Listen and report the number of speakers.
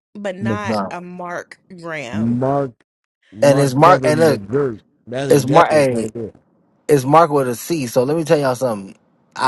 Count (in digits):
3